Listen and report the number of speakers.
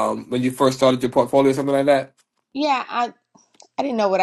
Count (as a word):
two